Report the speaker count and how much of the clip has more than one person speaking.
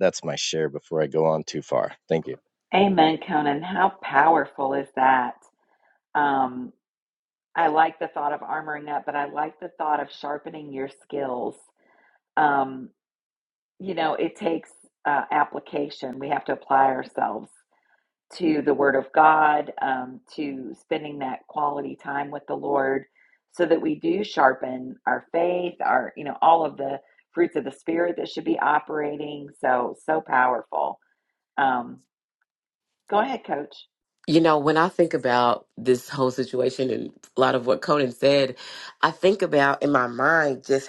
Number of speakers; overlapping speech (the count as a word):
three, no overlap